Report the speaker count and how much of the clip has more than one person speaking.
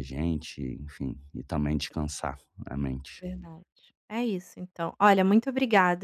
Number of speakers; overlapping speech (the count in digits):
2, no overlap